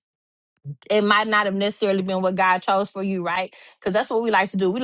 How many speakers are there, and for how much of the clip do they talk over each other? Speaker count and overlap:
one, no overlap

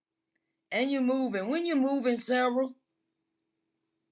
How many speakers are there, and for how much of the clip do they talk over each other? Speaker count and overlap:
one, no overlap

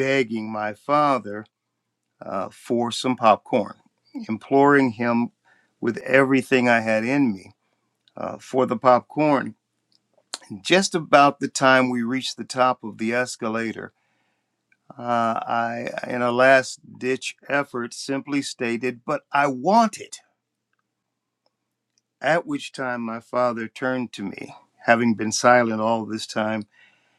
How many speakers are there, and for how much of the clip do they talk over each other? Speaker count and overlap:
one, no overlap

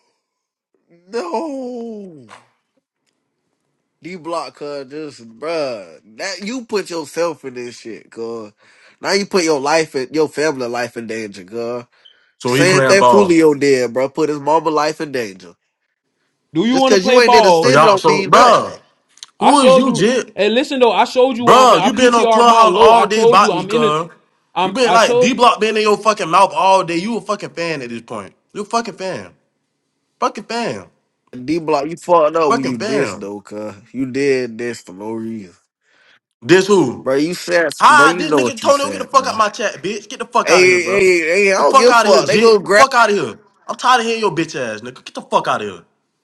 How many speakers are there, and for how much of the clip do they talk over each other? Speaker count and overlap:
three, about 23%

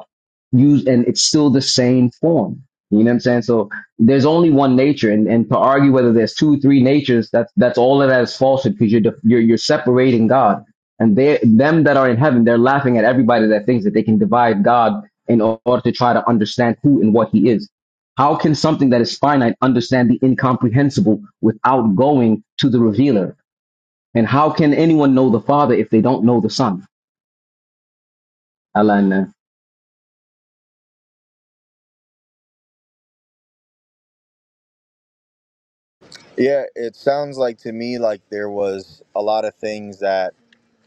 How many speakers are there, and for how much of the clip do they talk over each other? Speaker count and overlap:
two, no overlap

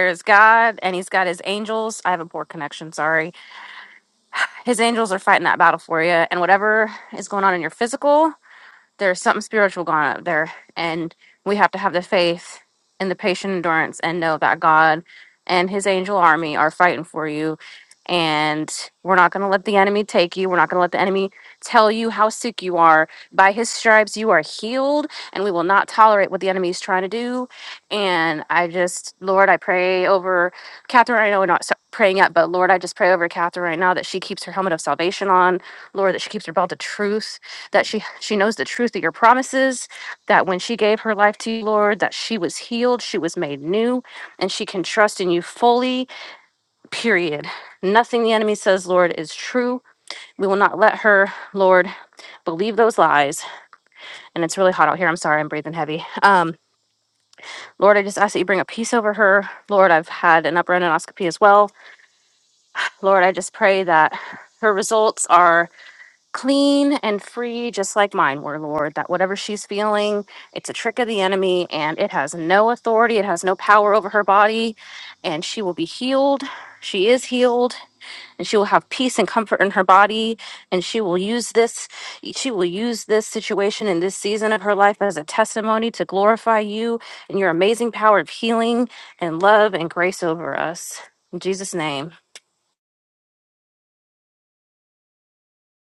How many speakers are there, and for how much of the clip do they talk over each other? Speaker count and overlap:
one, no overlap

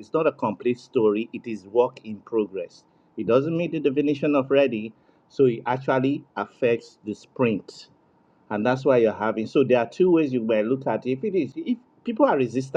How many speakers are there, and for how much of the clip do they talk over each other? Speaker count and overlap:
one, no overlap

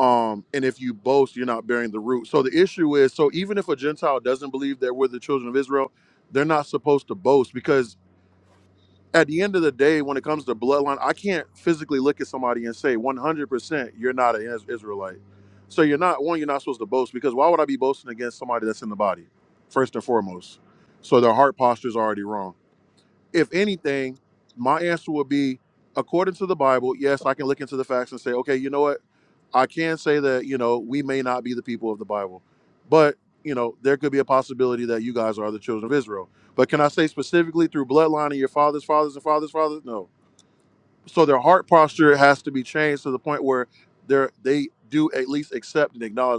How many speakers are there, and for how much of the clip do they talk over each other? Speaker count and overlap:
one, no overlap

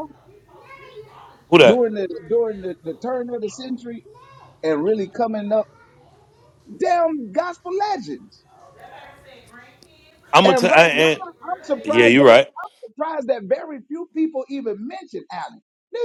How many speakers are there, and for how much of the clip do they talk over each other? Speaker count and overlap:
two, about 8%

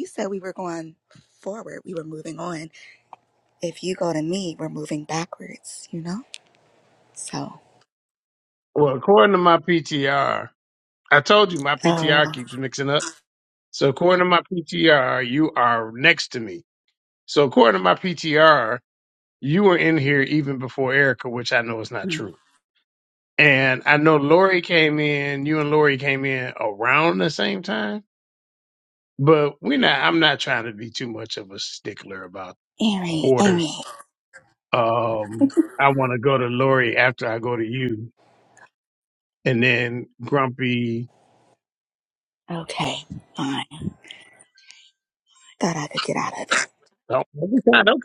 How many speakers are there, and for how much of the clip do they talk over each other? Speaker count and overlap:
two, about 2%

